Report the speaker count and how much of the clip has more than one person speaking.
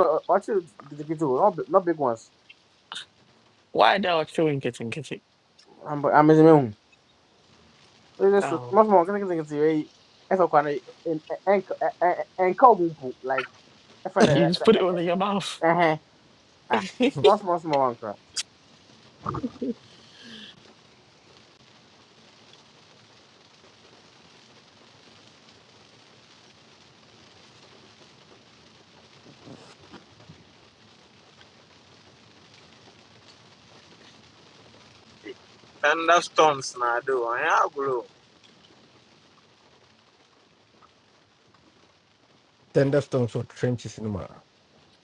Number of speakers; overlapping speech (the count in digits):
4, about 2%